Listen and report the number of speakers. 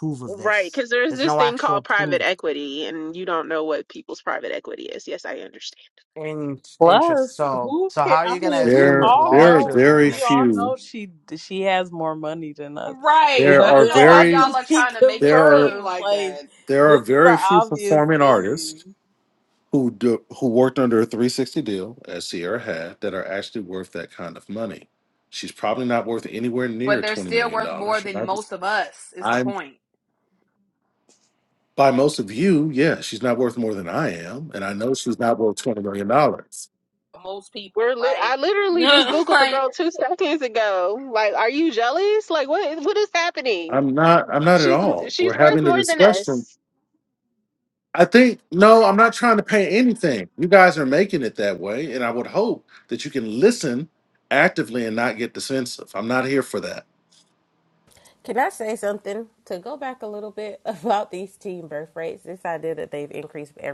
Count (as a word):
six